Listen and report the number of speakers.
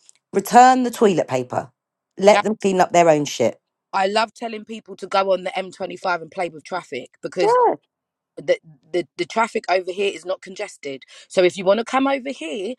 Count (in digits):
2